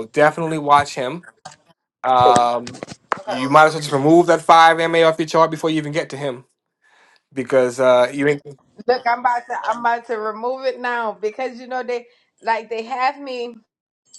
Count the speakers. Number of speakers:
2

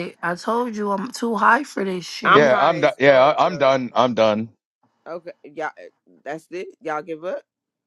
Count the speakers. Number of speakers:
3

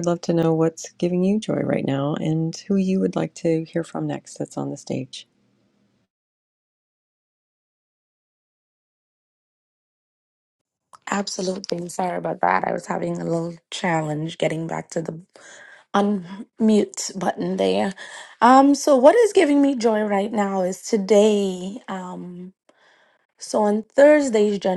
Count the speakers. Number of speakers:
2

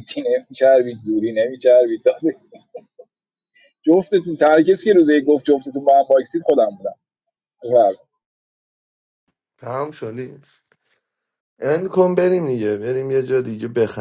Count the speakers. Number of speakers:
2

